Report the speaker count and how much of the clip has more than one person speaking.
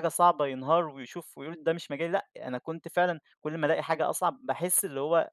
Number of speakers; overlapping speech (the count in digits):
1, no overlap